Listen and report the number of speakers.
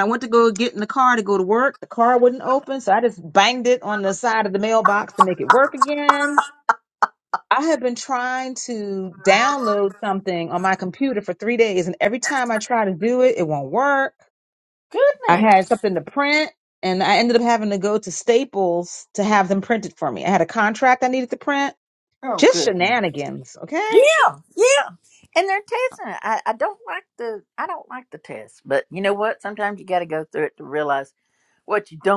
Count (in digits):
2